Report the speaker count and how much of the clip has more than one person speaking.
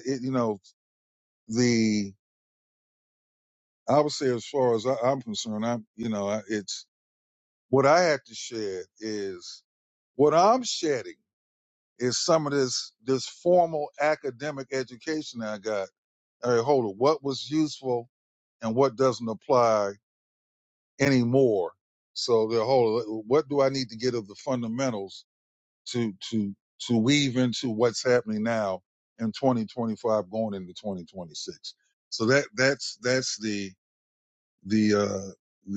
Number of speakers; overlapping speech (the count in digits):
1, no overlap